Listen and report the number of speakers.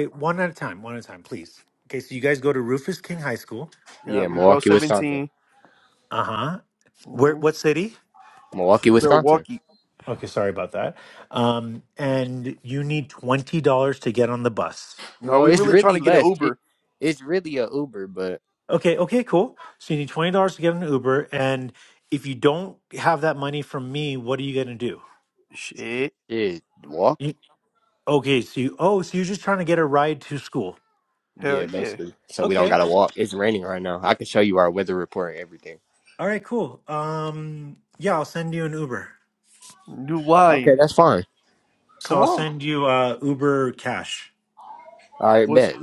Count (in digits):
3